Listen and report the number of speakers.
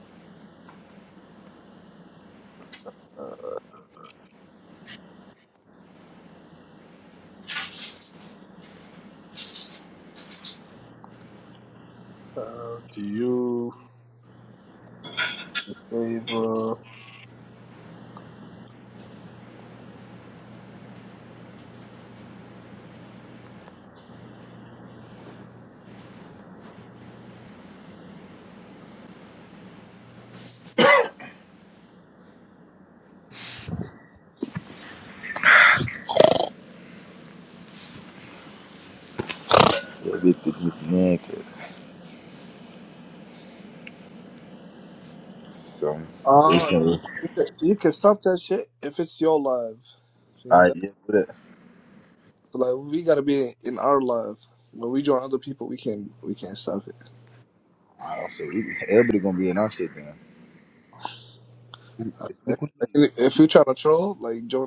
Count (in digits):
2